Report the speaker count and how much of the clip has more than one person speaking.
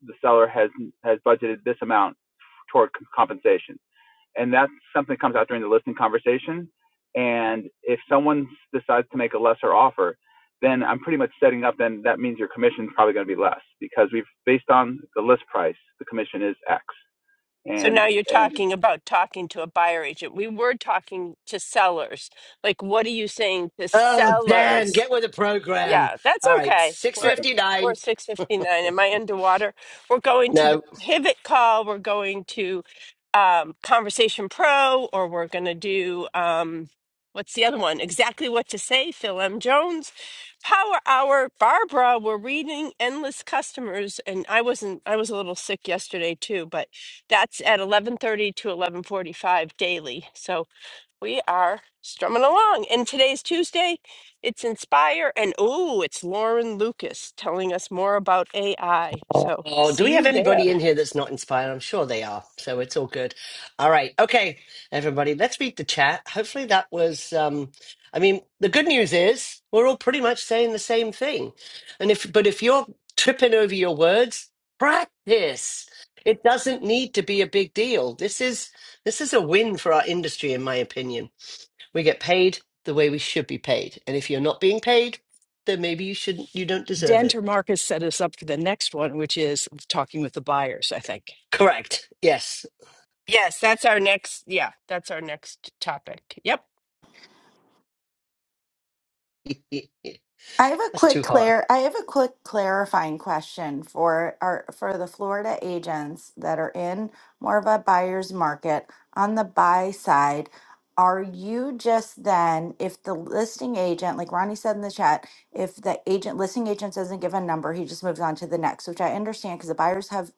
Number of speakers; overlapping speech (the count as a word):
five, about 4%